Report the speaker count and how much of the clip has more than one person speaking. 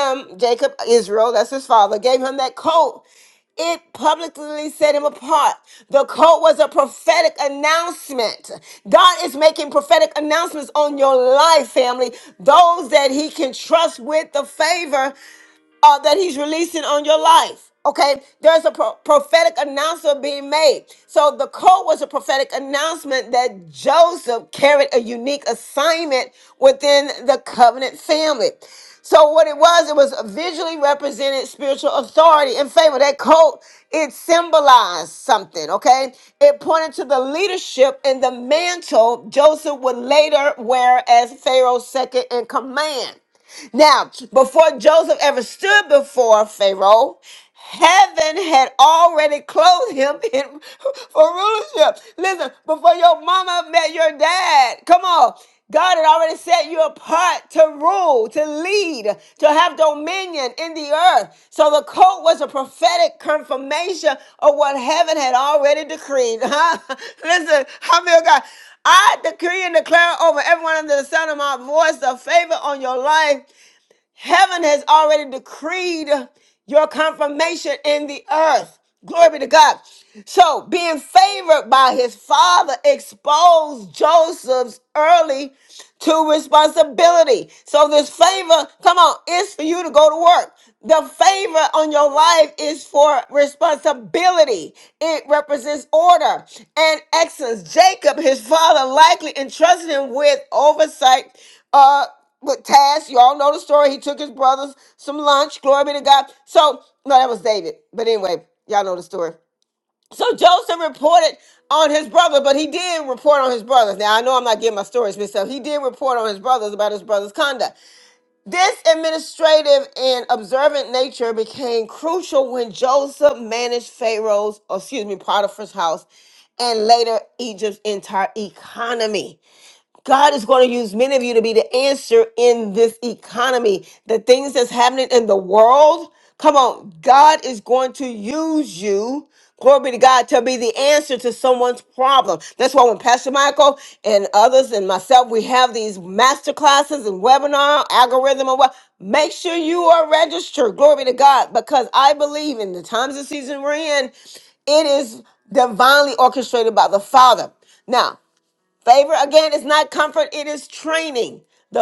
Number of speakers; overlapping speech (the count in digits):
1, no overlap